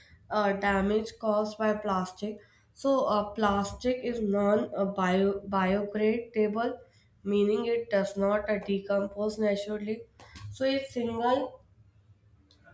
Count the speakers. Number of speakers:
1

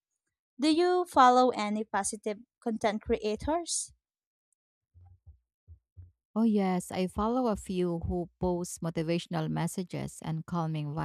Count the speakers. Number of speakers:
2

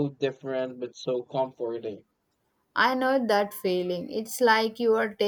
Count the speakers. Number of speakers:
2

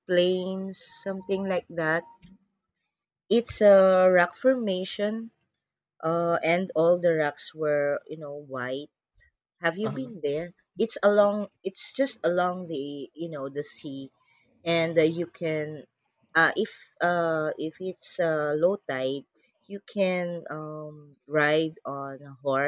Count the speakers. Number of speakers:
1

